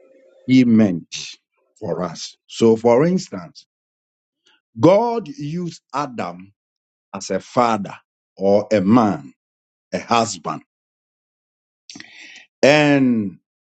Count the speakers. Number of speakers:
one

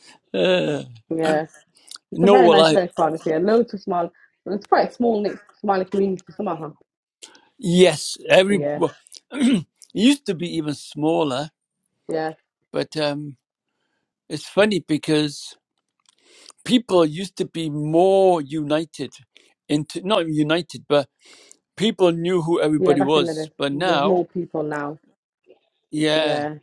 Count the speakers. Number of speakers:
two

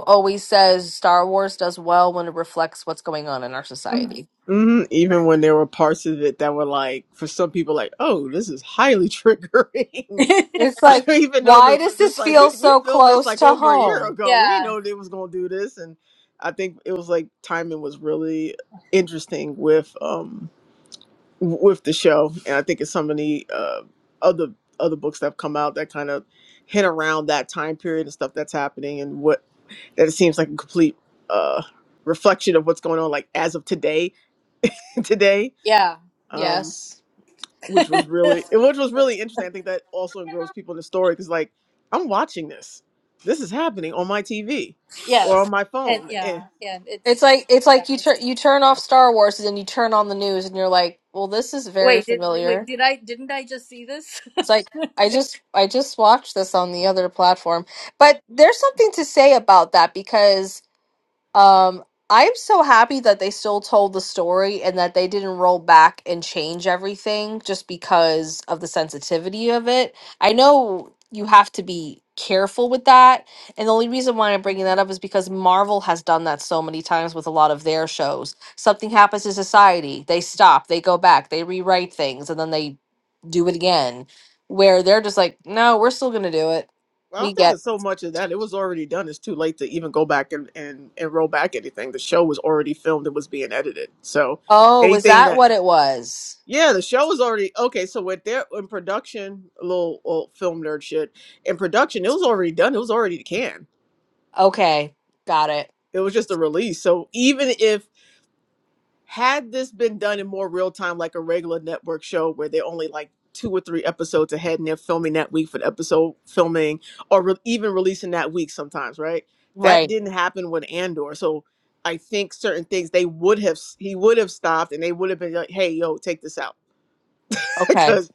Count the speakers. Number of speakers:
three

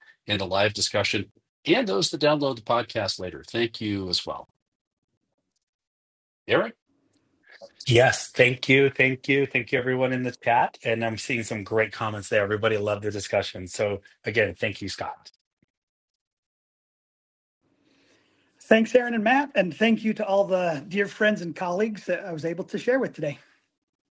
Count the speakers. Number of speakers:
three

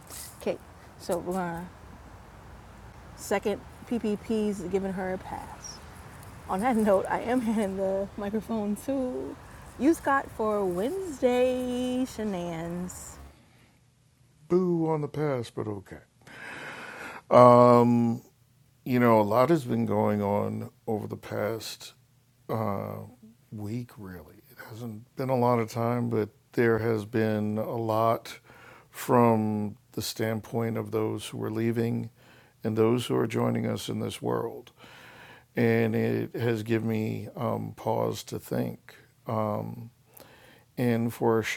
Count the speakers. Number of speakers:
two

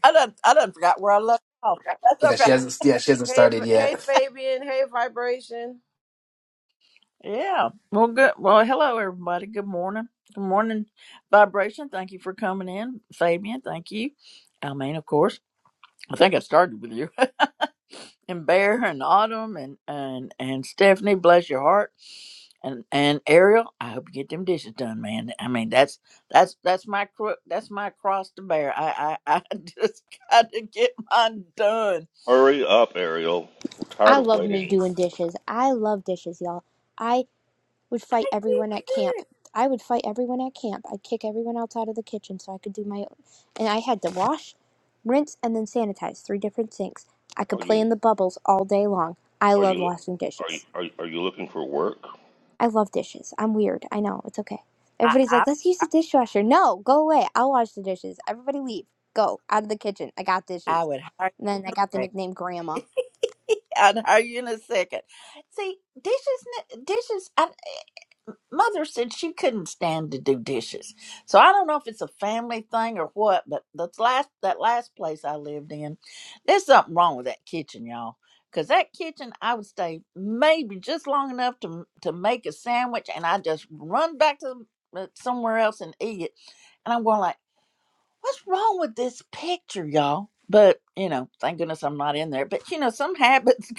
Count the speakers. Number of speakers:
five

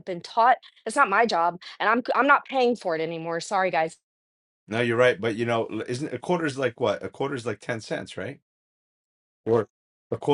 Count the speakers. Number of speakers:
two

